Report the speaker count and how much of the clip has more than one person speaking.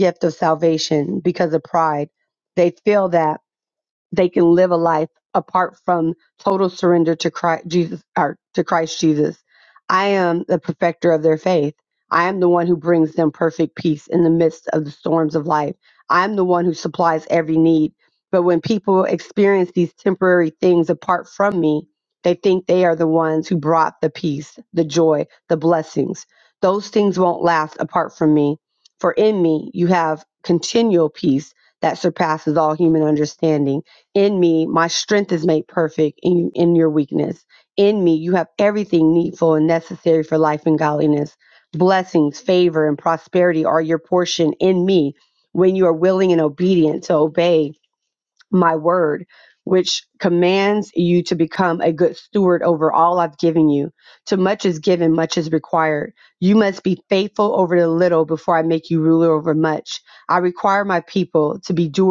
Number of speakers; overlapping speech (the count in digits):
1, no overlap